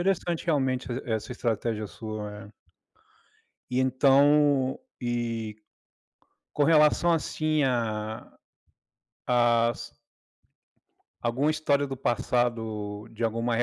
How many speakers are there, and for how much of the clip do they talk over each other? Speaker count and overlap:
one, no overlap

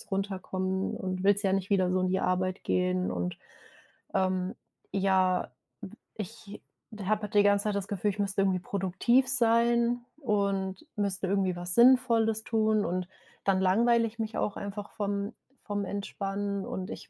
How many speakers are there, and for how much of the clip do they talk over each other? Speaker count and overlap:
one, no overlap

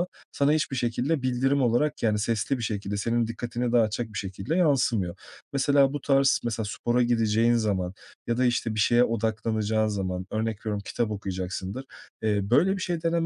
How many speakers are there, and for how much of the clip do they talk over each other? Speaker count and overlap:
one, no overlap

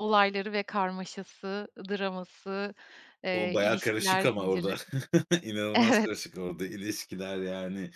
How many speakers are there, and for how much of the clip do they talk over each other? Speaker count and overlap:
two, about 22%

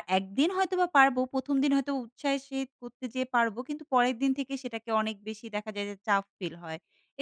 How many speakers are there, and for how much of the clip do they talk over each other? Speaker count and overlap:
one, no overlap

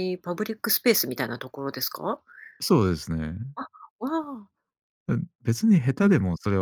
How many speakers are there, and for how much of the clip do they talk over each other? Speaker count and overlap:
two, about 2%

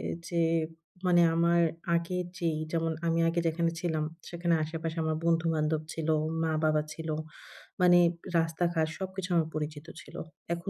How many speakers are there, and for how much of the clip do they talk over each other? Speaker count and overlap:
one, no overlap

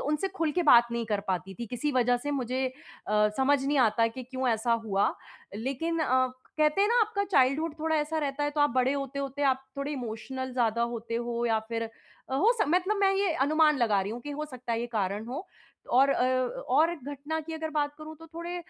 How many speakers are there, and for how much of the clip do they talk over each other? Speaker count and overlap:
one, no overlap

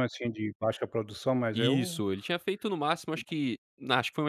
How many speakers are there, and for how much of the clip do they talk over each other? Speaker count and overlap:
two, about 11%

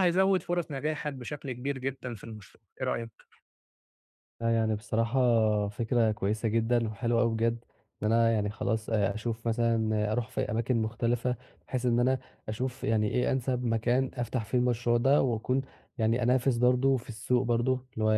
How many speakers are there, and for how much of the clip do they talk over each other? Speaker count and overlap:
two, no overlap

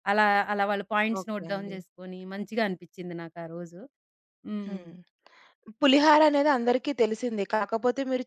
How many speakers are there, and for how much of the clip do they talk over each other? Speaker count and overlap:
two, about 11%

